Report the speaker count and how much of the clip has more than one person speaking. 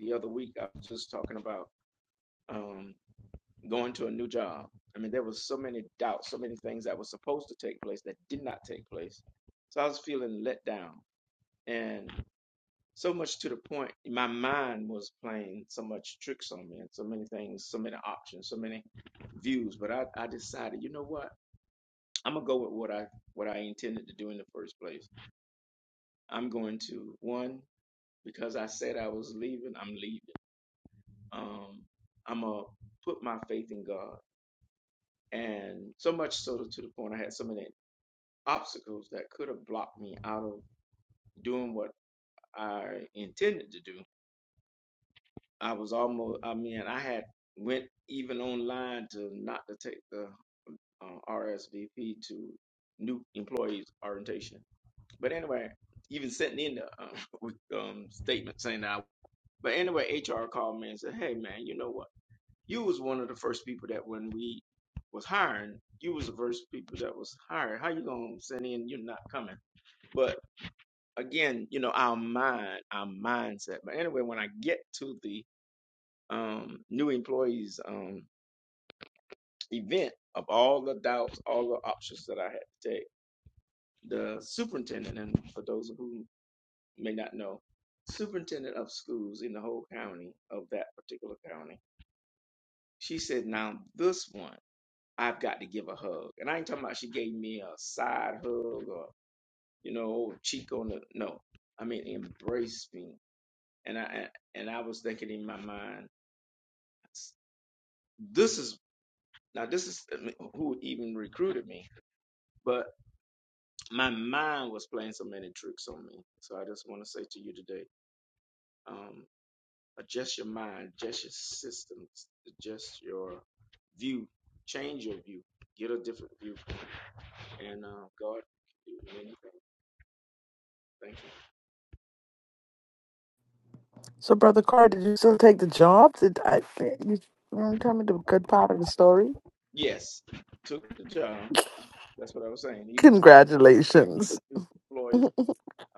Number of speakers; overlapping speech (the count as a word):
two, under 1%